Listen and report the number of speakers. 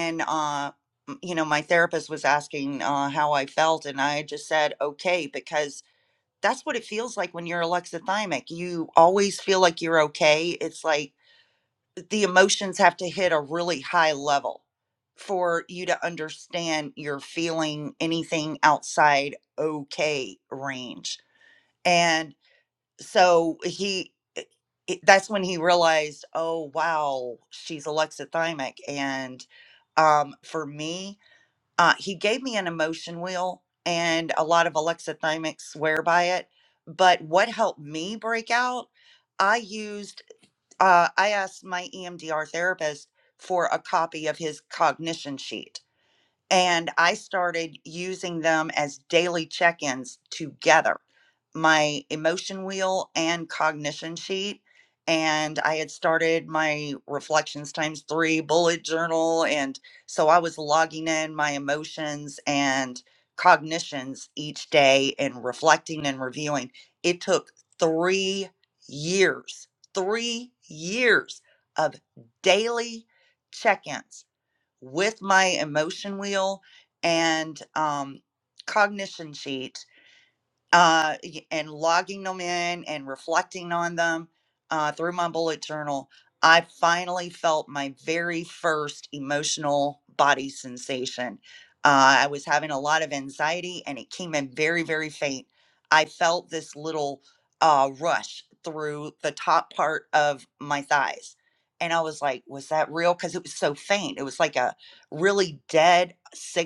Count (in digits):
1